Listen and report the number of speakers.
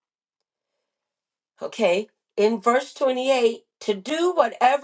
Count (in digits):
1